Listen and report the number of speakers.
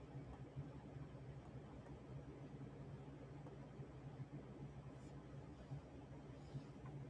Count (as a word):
zero